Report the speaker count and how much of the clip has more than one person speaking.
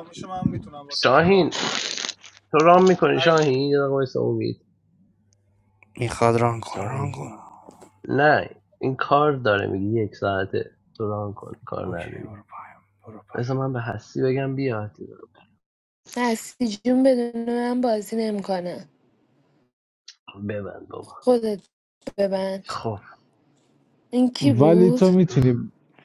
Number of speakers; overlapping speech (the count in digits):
5, about 10%